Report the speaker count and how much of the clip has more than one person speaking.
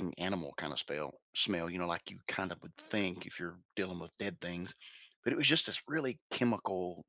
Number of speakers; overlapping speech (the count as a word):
one, no overlap